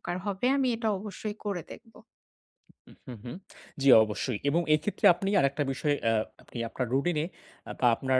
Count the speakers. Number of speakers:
two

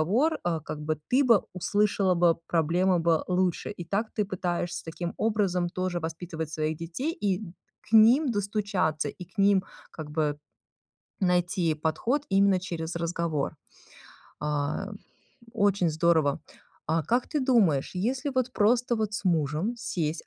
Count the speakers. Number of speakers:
one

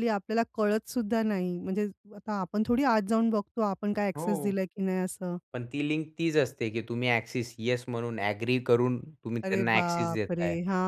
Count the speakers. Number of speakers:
two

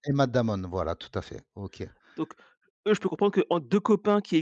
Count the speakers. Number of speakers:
two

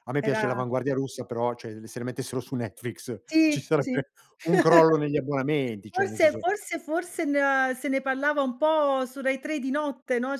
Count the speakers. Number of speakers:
two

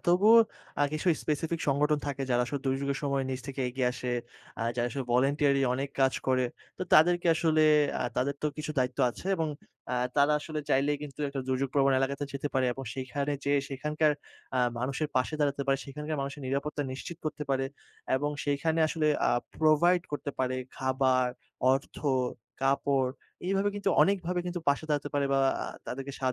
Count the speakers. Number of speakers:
one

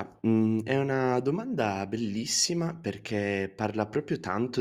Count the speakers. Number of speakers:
one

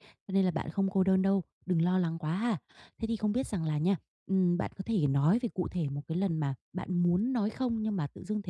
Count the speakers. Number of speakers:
one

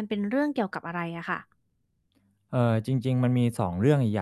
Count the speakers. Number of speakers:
two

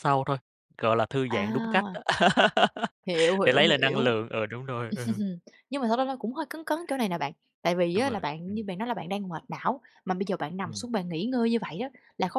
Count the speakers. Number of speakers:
two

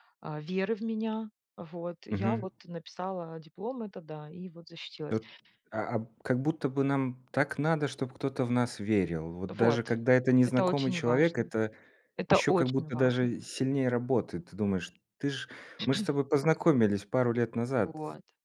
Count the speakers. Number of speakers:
two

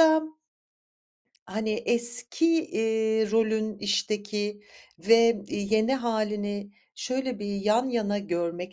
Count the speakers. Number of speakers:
one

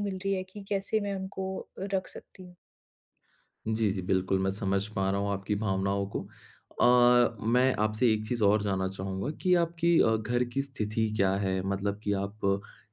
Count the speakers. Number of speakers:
two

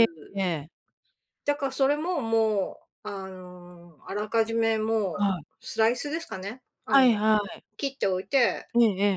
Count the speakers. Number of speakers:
two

